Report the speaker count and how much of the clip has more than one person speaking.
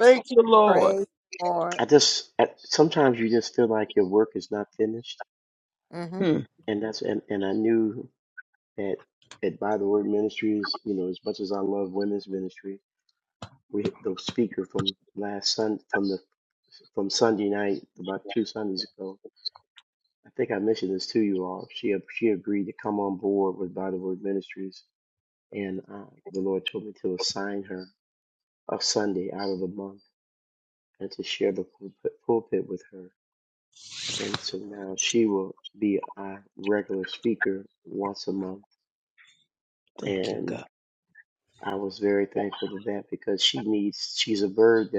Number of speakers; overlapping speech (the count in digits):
3, about 2%